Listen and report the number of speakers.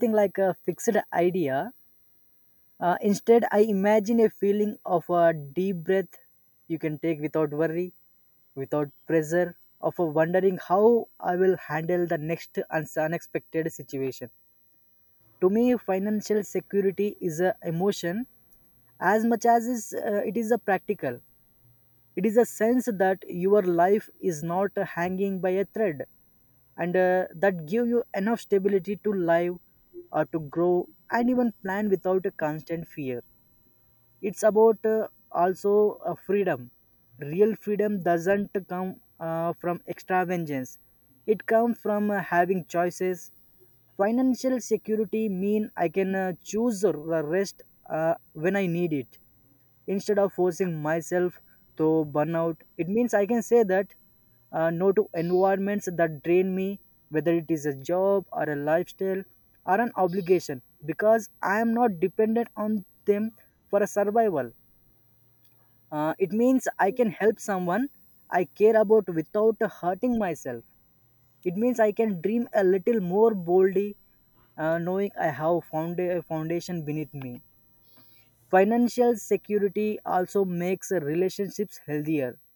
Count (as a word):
one